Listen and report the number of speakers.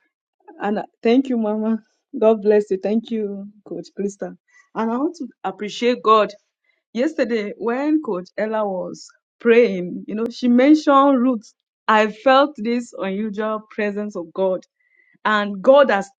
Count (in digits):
1